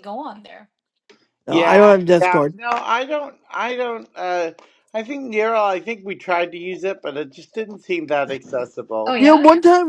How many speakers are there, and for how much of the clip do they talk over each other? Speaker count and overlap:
three, about 14%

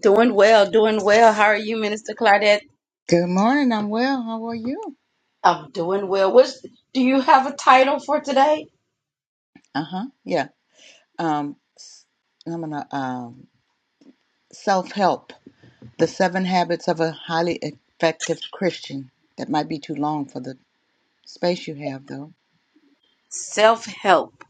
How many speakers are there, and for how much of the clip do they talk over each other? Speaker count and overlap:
two, no overlap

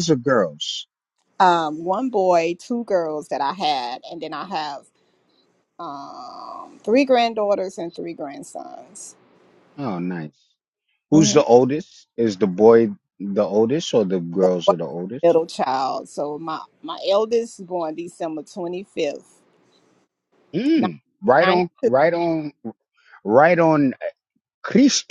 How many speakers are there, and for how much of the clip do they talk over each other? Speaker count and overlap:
two, about 5%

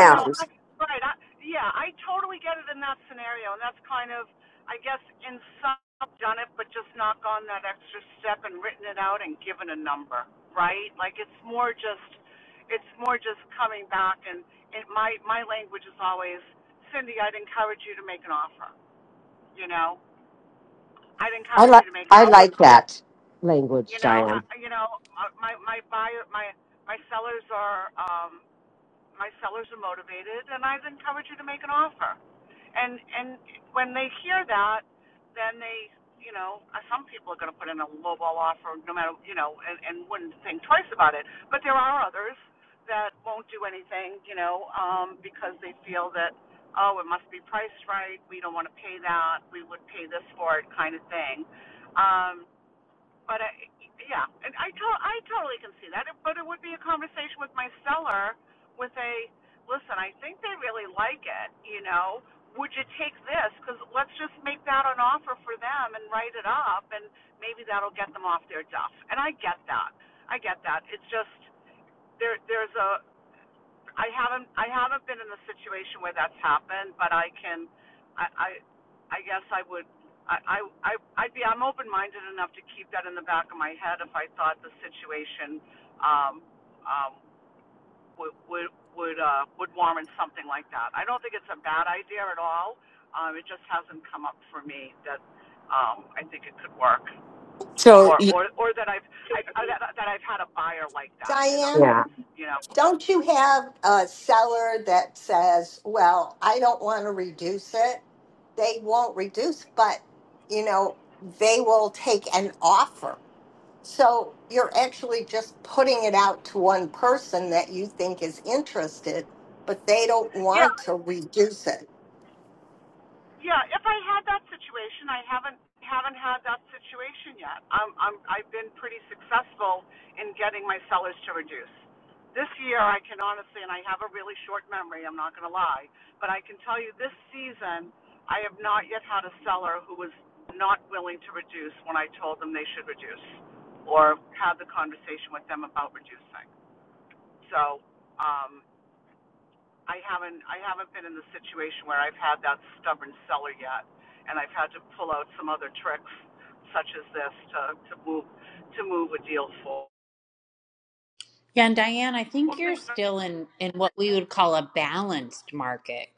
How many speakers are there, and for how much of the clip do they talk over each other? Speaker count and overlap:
four, about 2%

